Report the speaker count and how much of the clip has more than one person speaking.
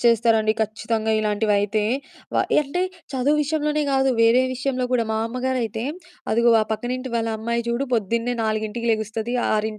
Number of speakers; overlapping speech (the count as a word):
one, no overlap